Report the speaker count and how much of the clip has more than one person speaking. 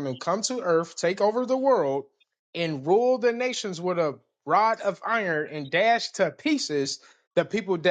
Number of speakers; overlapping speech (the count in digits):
1, no overlap